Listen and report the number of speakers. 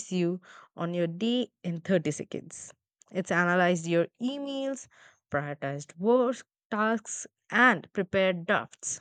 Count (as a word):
one